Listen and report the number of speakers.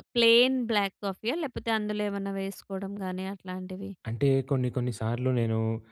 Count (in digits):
2